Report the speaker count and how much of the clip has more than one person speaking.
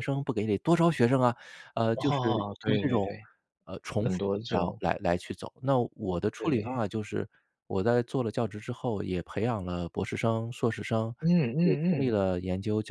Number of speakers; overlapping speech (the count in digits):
2, about 18%